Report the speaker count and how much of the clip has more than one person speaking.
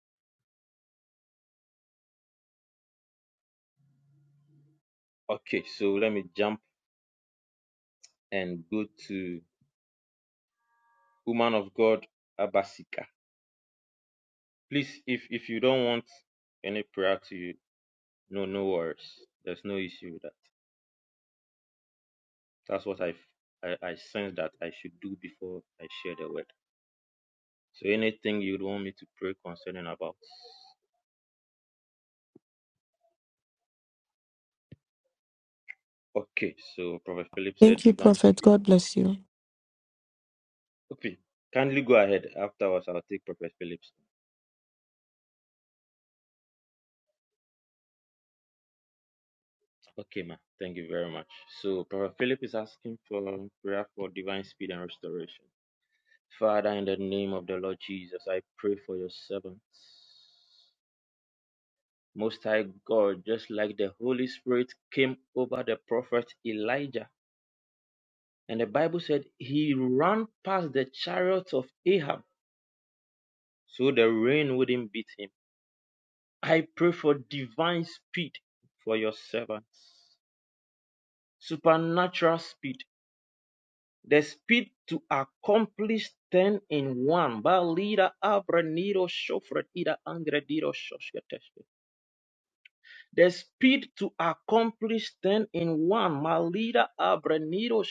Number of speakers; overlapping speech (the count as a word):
two, about 1%